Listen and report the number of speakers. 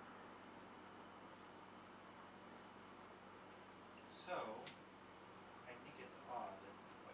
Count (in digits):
1